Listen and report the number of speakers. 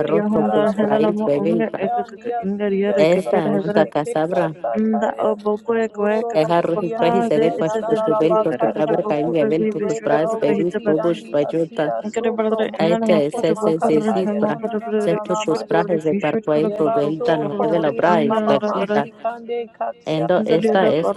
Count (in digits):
3